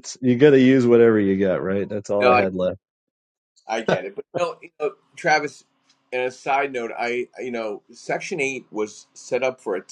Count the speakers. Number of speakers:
2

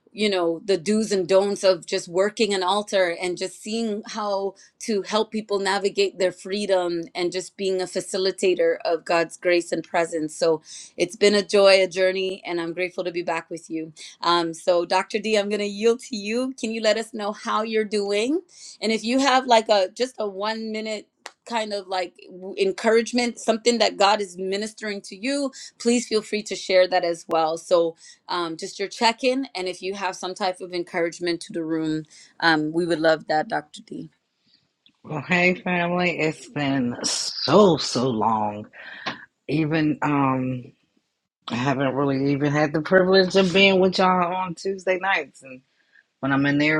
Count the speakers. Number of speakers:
2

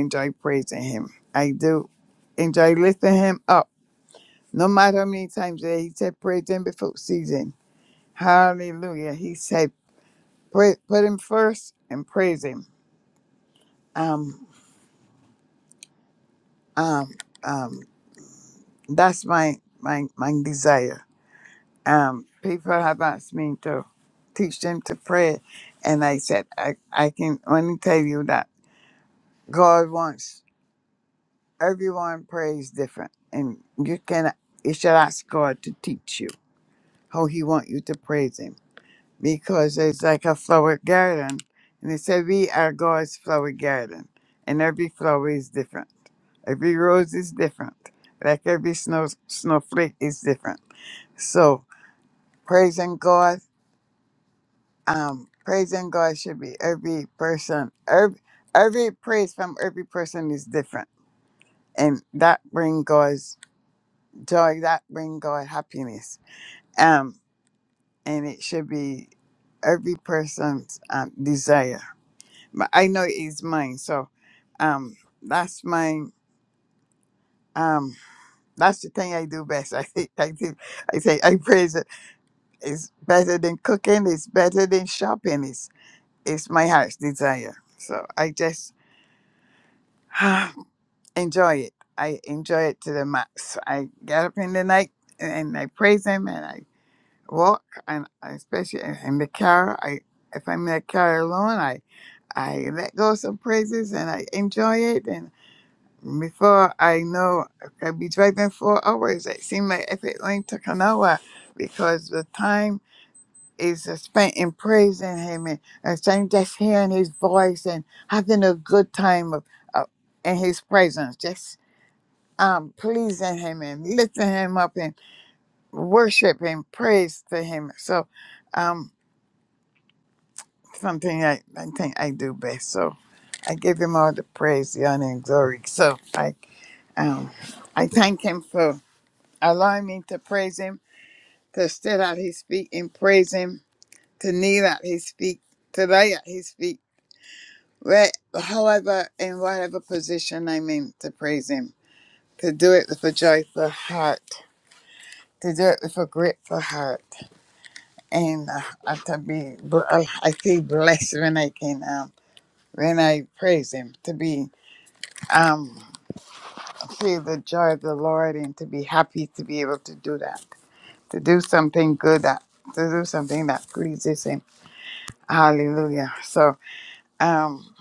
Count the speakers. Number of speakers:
1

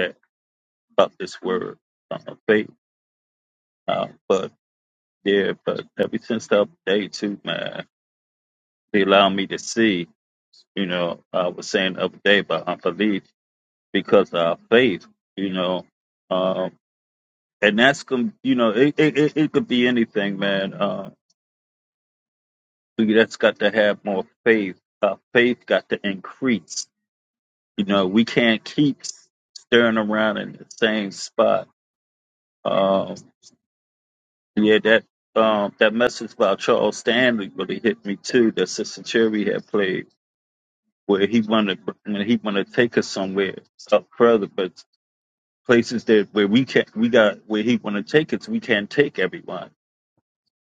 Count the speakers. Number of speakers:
1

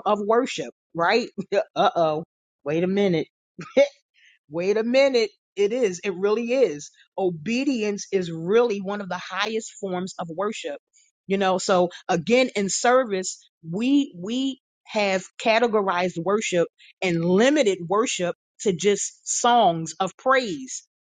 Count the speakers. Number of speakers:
1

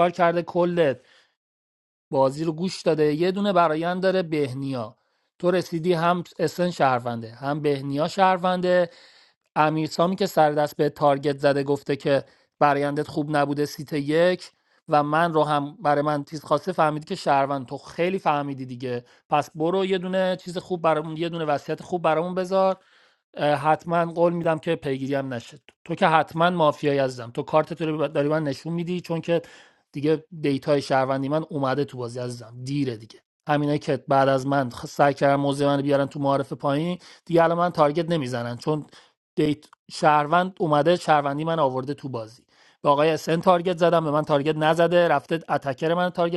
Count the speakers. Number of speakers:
1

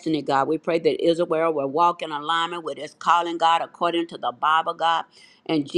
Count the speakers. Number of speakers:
1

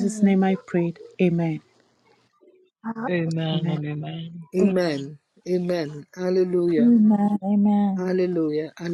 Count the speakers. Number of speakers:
4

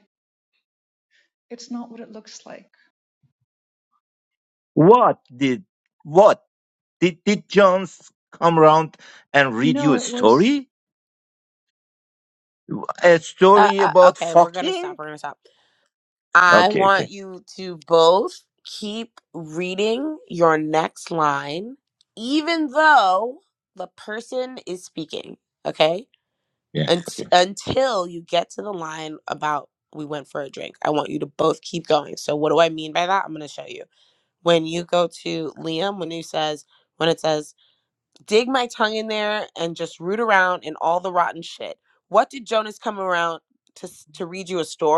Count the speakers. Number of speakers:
3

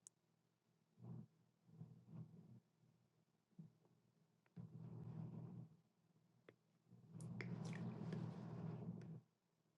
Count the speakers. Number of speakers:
0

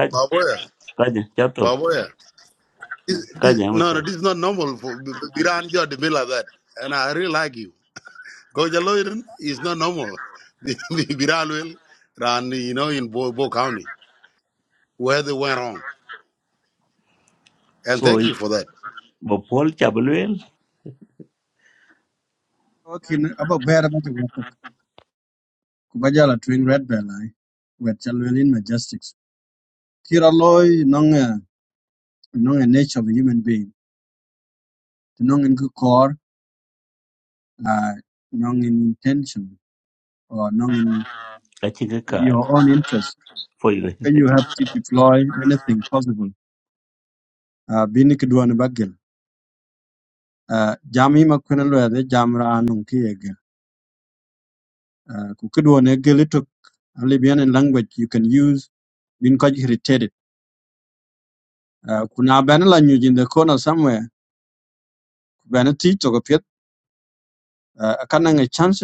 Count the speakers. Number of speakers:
3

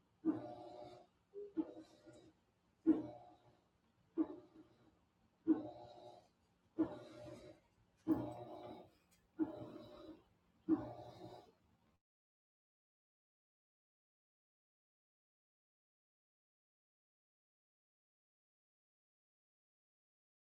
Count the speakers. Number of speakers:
0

